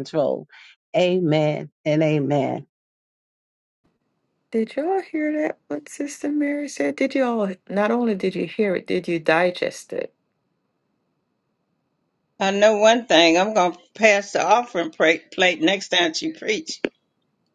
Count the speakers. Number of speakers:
3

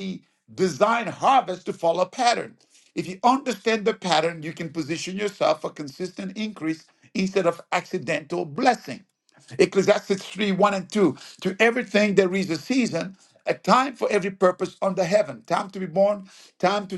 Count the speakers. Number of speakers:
1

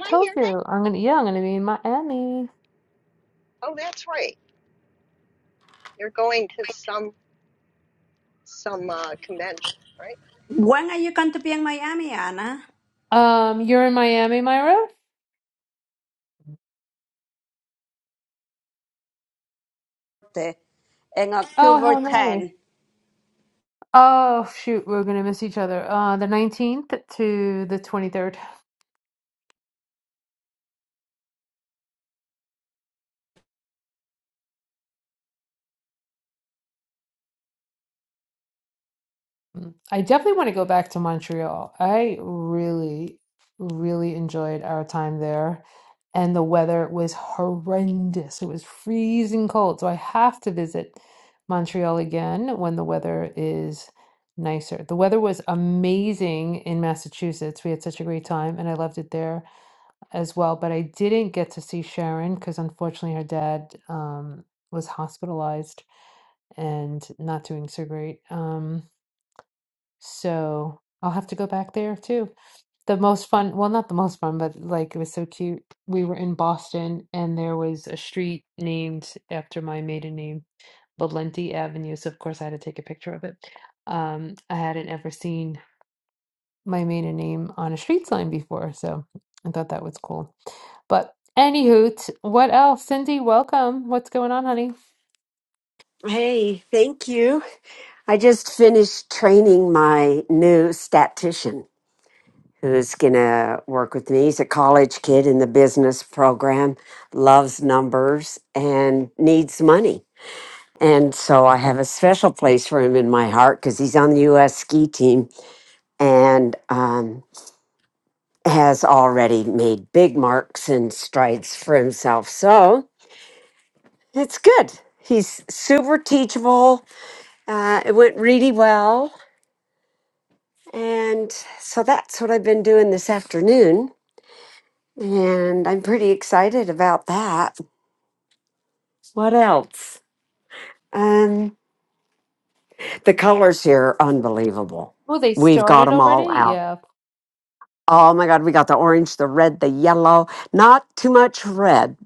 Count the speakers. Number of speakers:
4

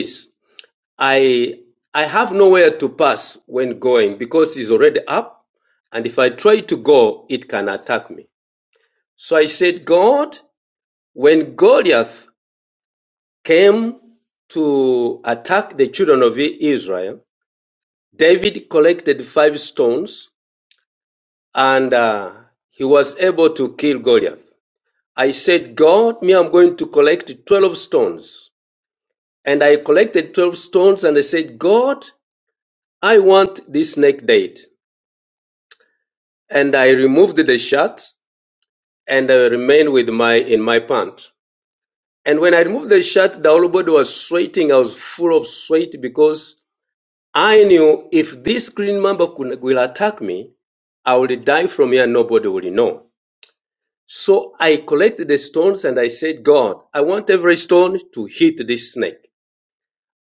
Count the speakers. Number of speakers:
1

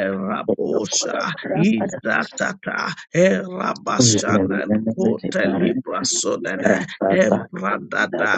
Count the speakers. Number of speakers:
2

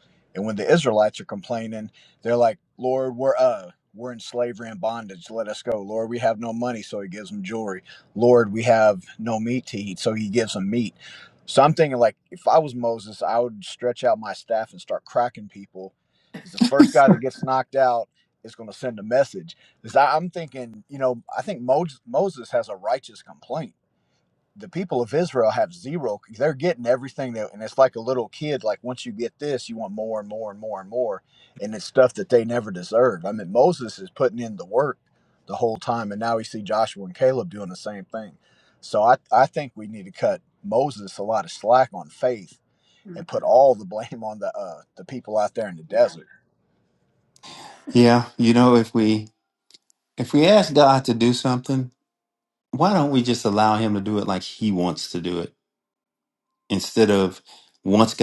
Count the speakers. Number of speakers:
2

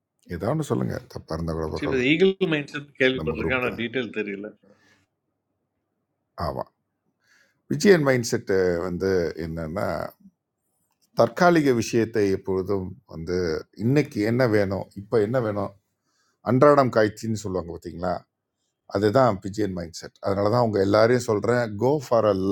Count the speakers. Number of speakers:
2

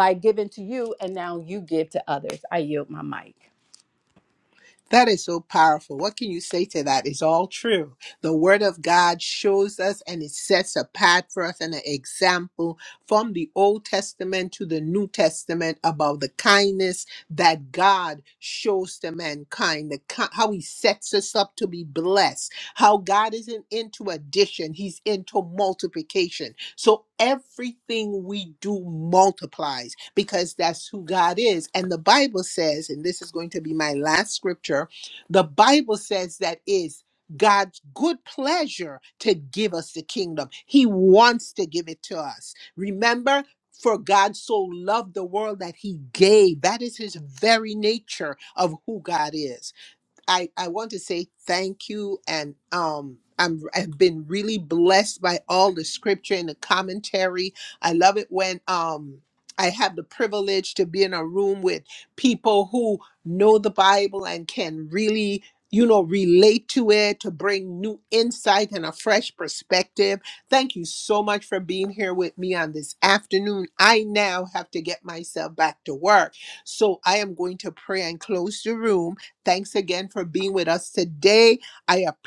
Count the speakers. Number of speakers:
2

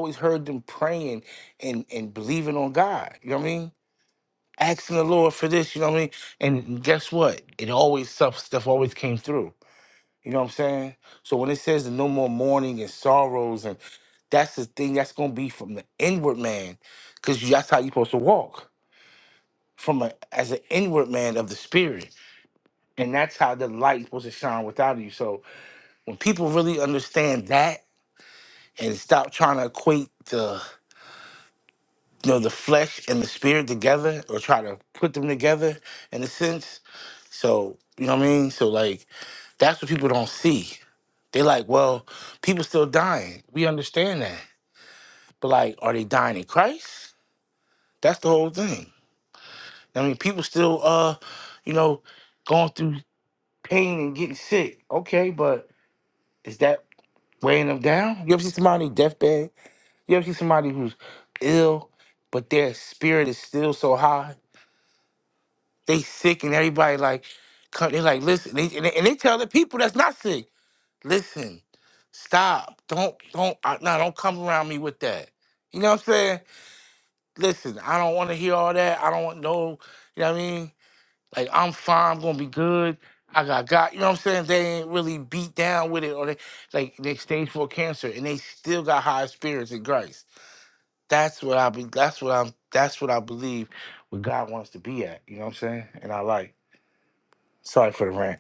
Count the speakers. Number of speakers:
1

